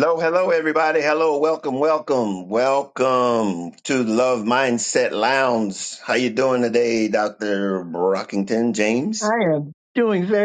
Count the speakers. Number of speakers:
2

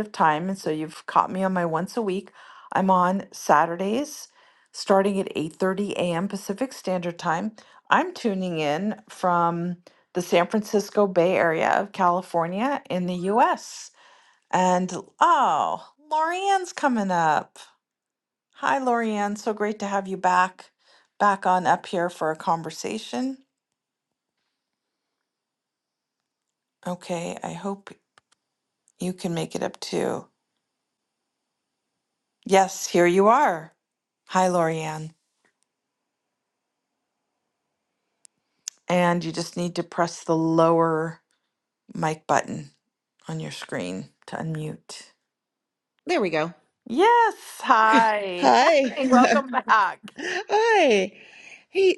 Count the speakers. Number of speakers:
2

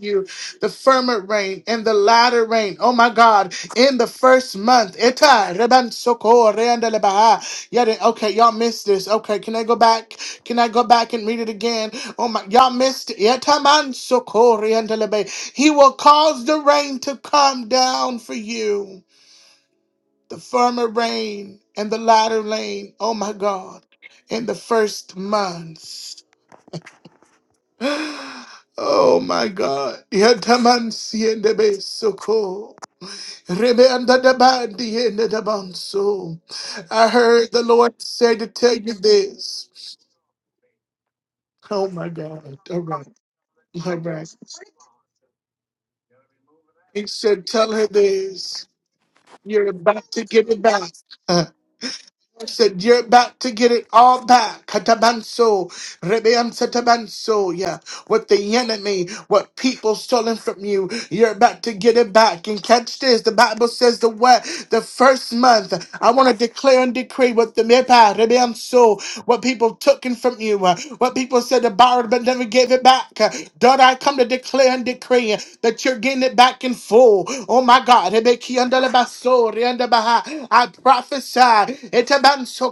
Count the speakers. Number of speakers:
1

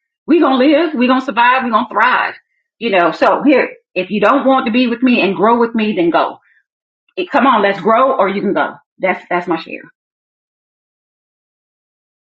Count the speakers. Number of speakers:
1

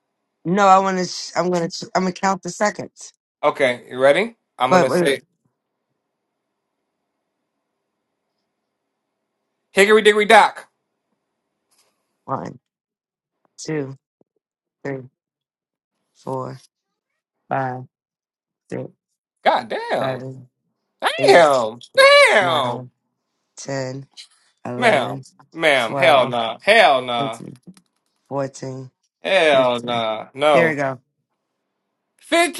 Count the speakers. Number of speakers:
2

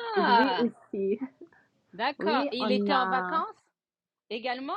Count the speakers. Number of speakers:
2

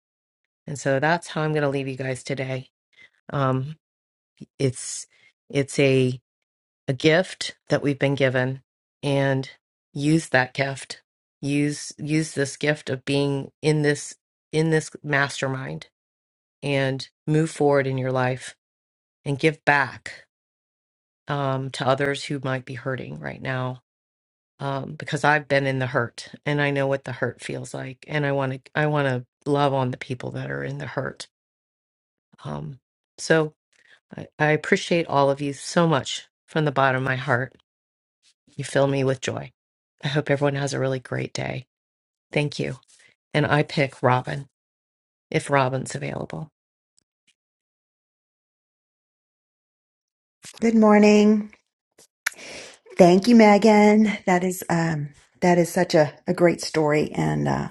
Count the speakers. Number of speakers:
2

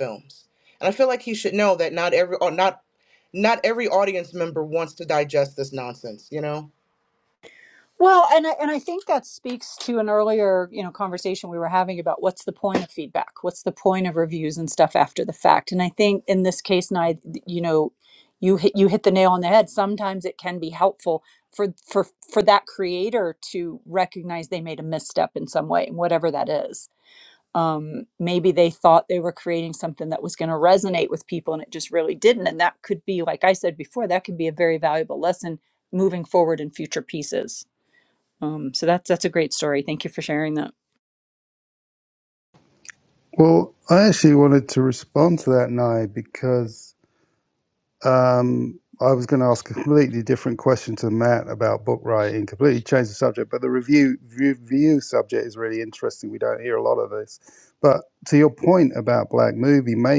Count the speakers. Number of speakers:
3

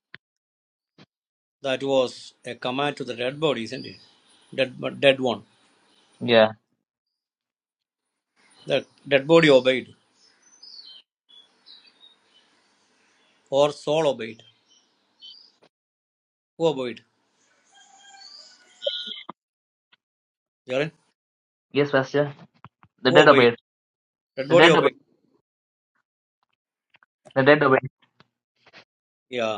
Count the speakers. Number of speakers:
2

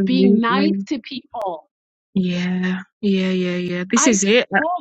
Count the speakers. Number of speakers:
2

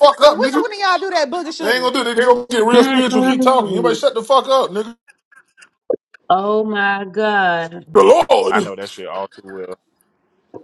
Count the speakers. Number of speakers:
4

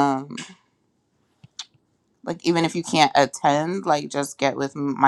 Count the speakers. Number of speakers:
1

